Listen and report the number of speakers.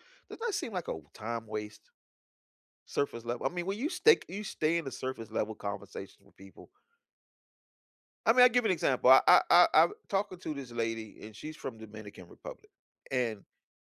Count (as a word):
one